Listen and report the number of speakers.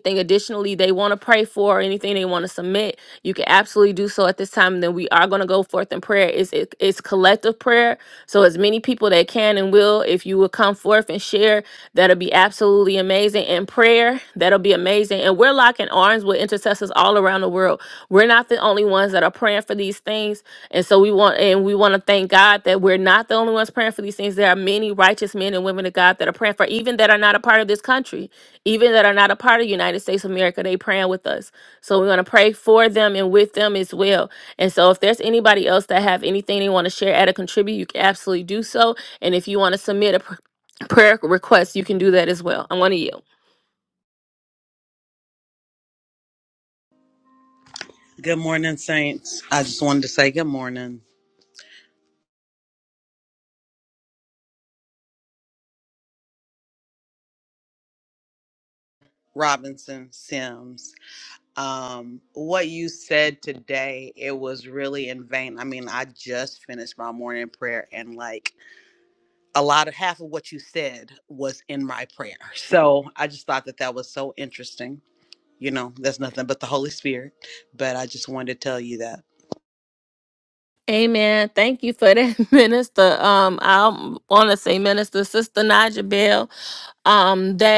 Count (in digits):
2